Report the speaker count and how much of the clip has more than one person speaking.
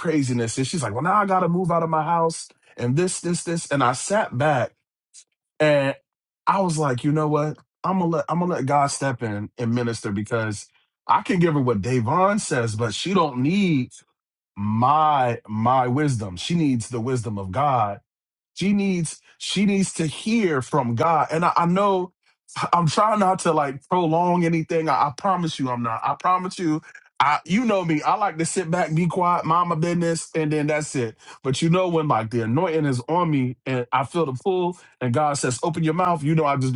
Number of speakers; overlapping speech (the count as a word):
one, no overlap